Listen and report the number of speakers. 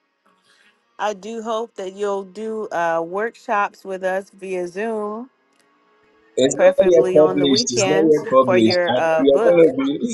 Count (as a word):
two